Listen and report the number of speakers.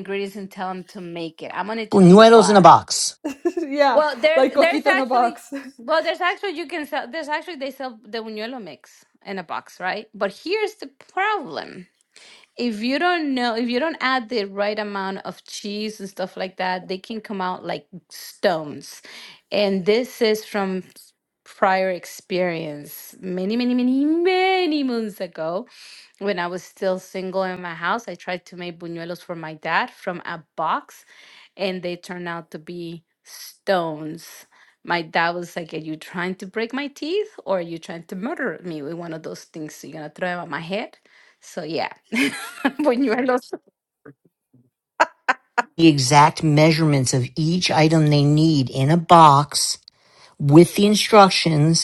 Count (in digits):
3